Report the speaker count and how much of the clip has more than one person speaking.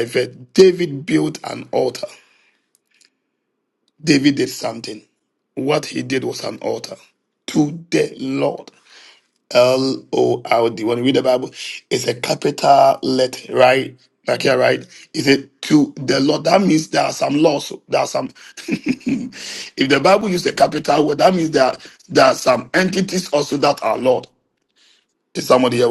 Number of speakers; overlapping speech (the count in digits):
1, no overlap